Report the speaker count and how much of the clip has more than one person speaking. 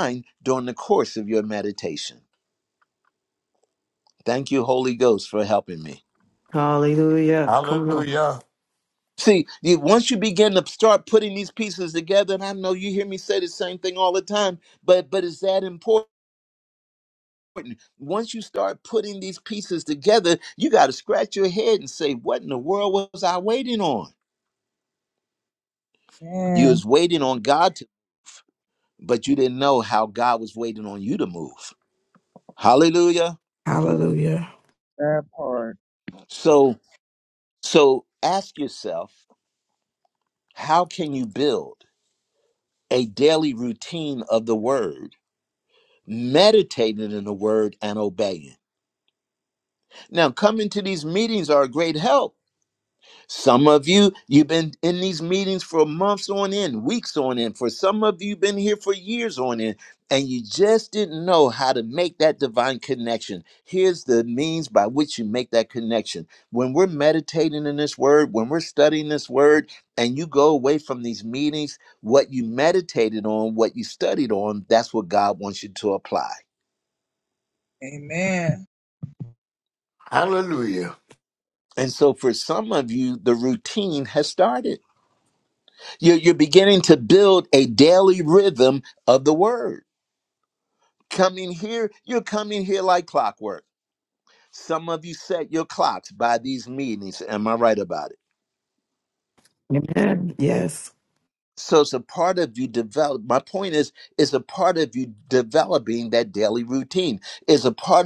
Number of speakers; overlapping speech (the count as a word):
five, about 1%